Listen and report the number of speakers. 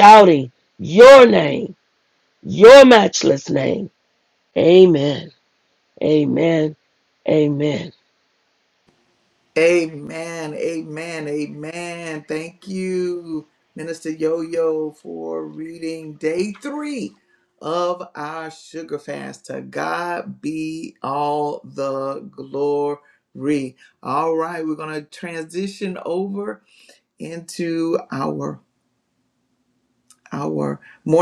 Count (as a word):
two